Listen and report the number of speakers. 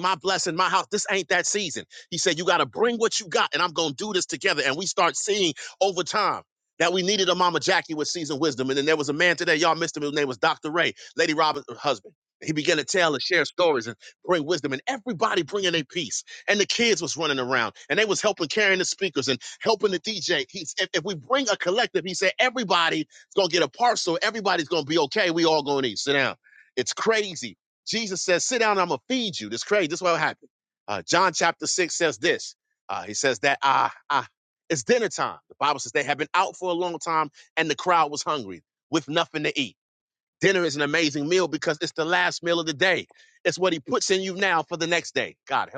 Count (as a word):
one